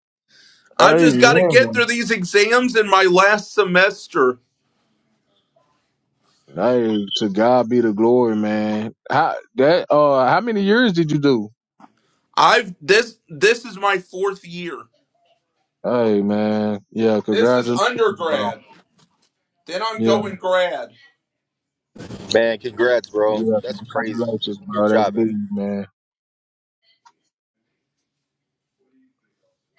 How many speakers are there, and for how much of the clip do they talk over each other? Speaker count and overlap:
three, about 14%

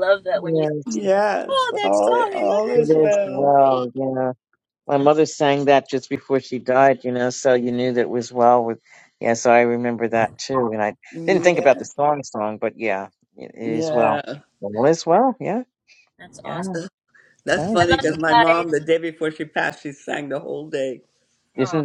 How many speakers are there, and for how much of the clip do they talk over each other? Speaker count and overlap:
three, about 24%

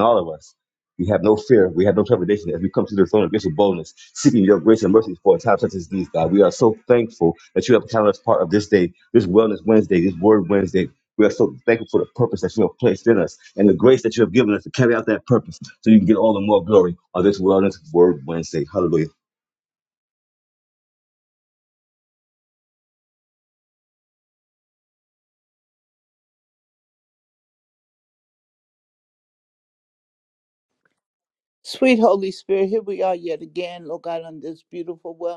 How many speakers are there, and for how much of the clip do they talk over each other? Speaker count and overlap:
two, no overlap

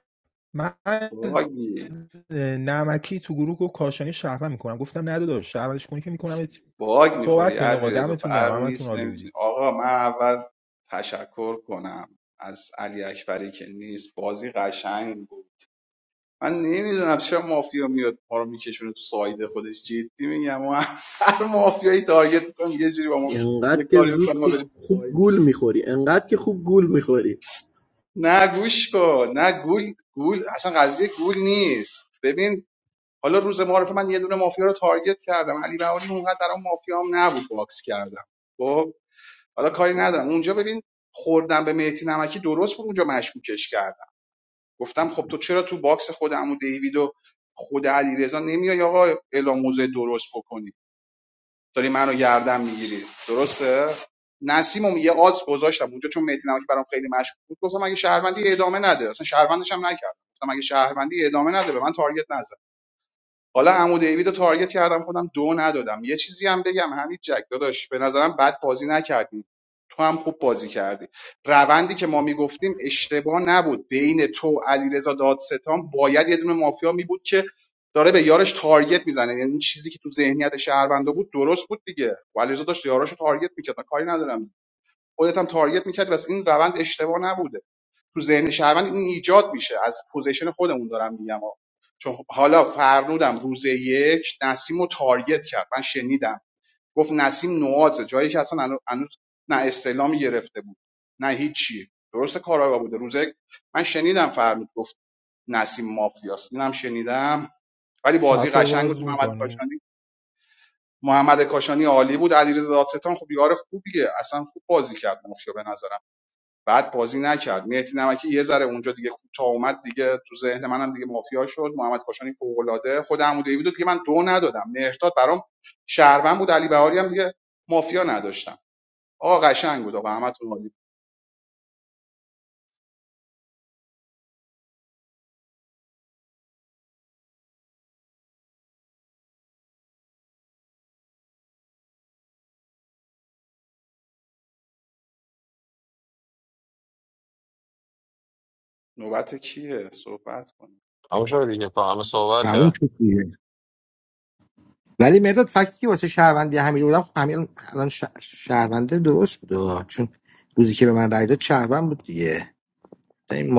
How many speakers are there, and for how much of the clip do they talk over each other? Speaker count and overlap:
five, about 3%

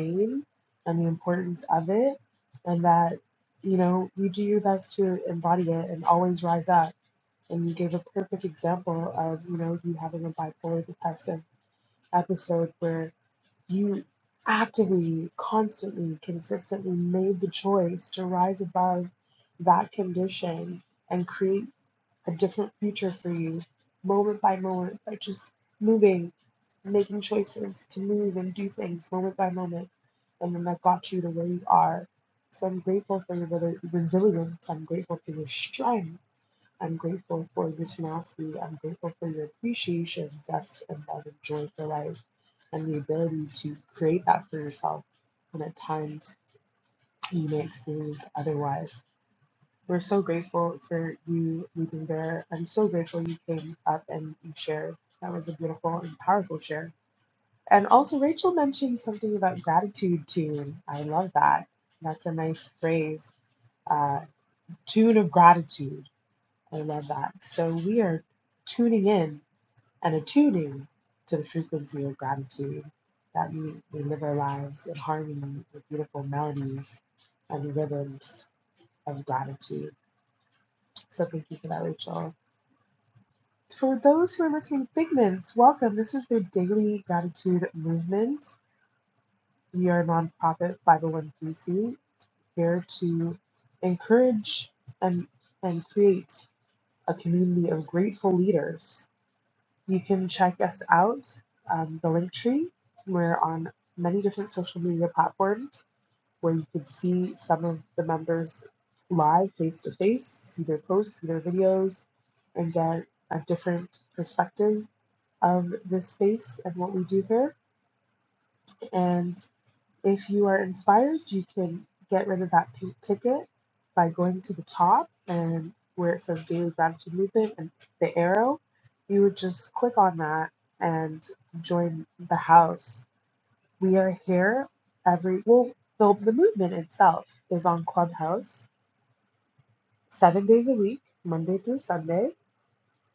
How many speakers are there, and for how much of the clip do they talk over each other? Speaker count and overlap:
one, no overlap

